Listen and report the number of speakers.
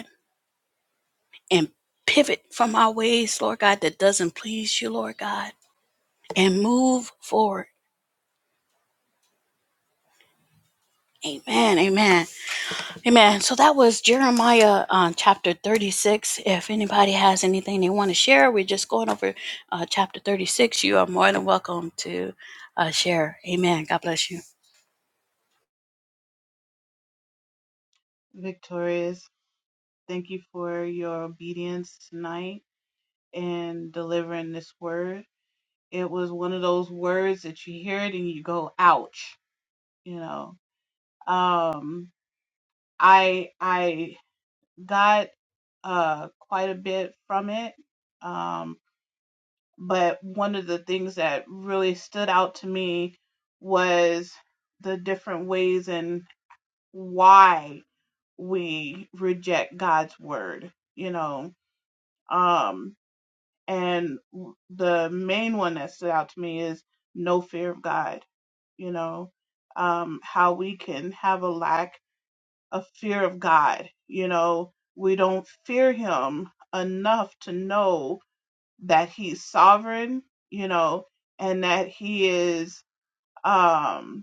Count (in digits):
2